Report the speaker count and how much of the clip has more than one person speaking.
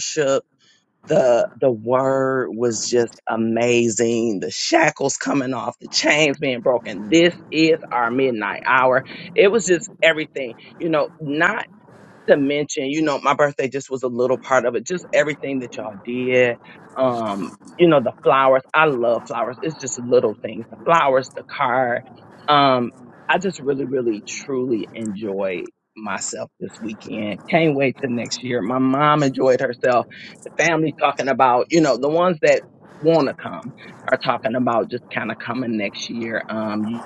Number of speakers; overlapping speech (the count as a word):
one, no overlap